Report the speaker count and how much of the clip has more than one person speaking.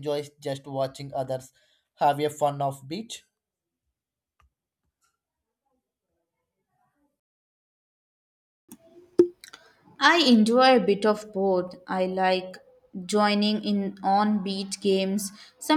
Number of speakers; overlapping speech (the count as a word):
two, no overlap